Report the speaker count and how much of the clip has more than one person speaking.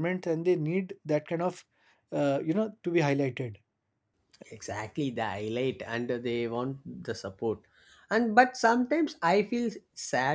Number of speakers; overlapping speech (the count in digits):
2, no overlap